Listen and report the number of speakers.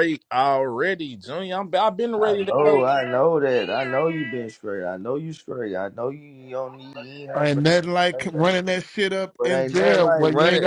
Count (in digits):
3